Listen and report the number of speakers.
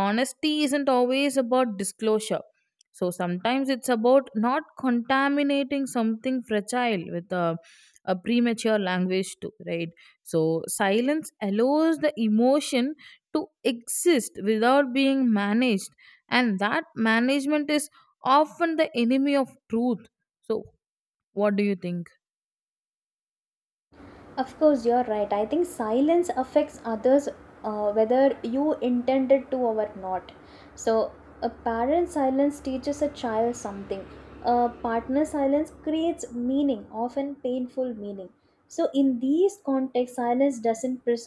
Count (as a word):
two